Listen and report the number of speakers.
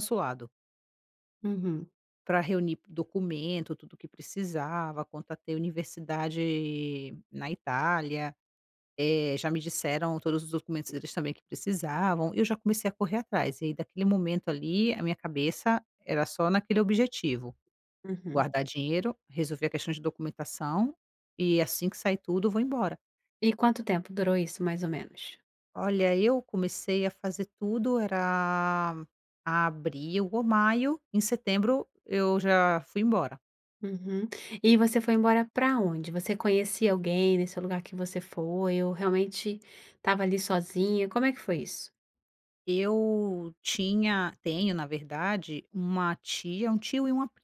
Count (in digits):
2